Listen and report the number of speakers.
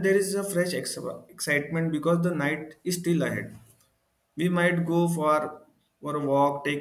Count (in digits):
1